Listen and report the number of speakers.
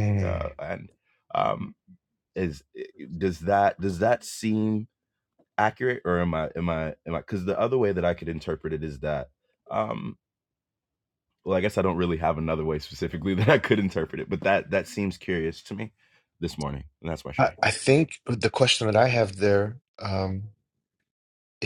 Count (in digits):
2